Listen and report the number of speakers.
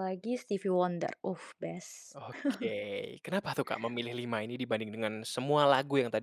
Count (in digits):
2